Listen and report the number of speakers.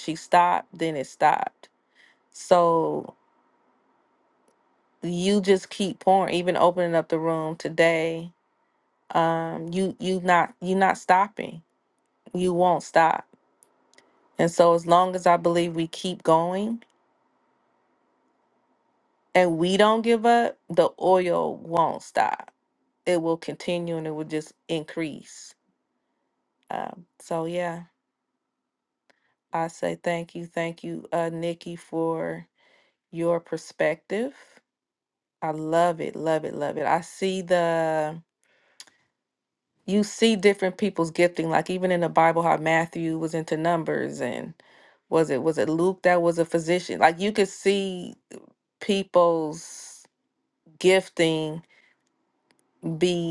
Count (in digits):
1